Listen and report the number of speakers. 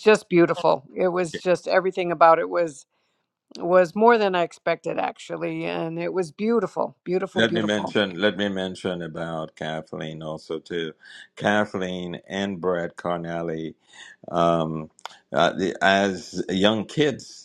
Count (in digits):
2